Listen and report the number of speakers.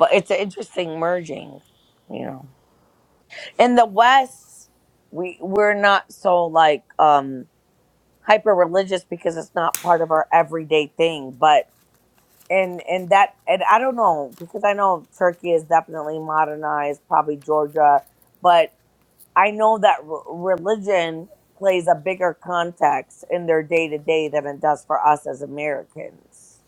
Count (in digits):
1